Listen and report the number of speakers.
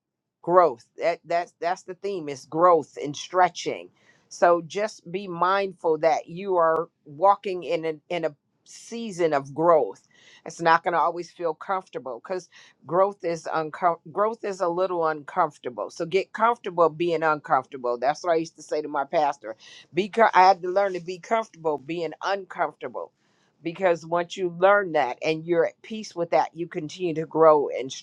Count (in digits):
1